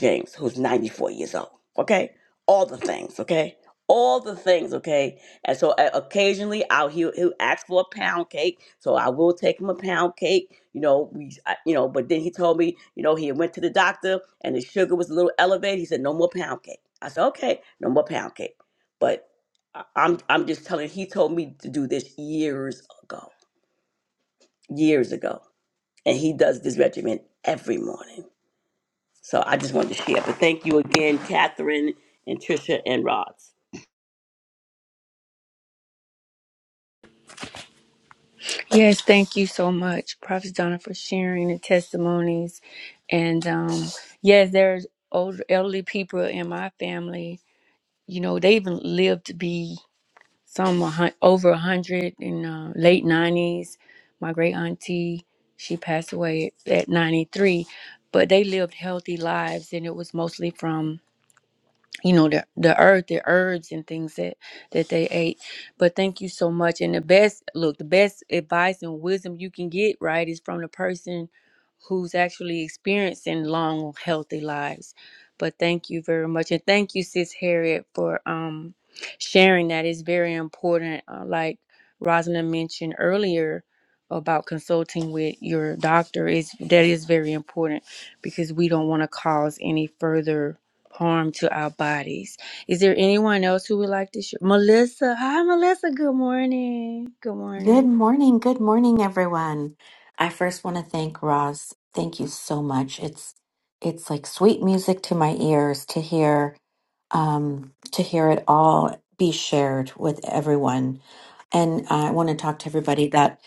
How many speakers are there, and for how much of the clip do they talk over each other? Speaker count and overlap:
three, under 1%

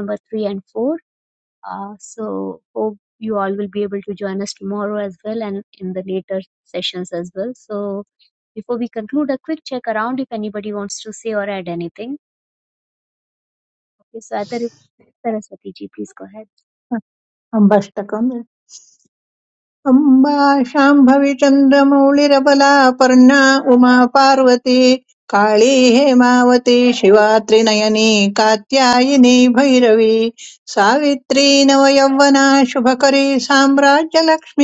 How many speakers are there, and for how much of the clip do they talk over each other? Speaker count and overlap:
two, no overlap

